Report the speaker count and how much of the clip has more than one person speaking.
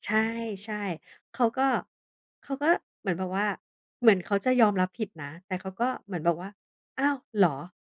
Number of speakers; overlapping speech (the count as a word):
one, no overlap